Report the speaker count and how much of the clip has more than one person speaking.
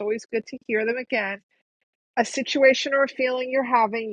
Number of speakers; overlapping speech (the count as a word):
one, no overlap